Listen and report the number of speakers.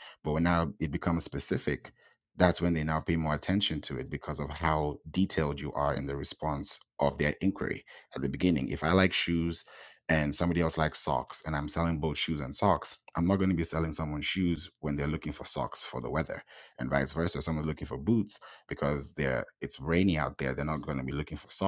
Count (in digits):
1